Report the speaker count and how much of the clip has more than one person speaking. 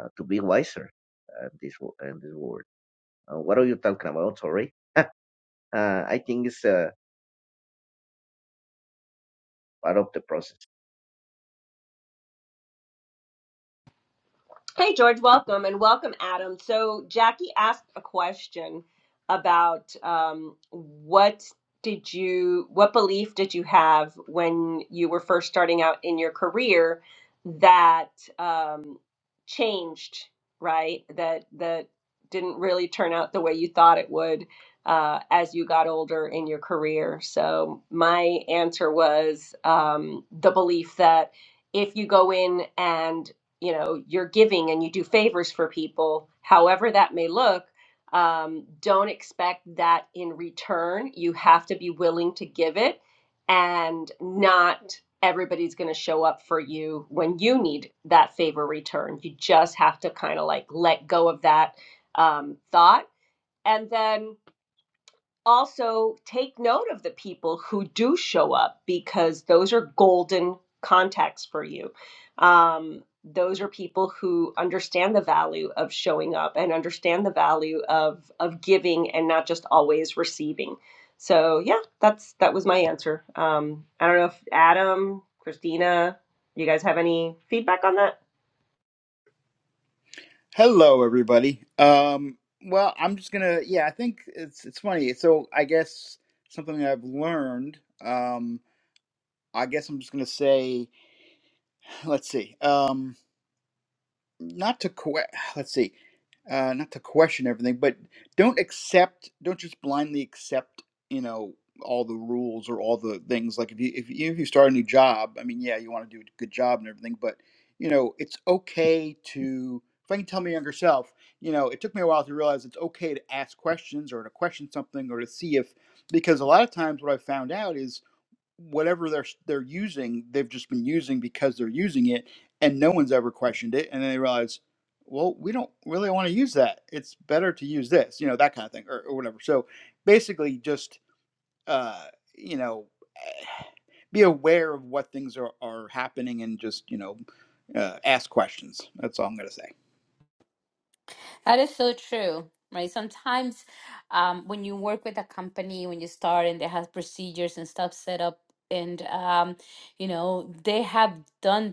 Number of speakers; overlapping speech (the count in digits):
4, no overlap